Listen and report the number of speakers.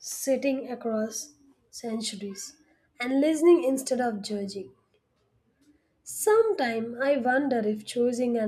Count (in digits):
1